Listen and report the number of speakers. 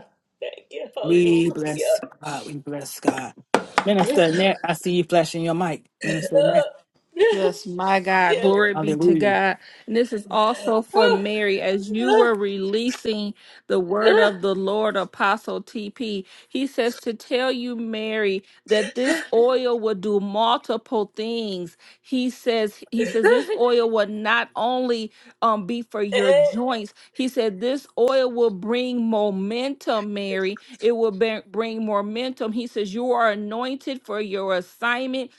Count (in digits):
3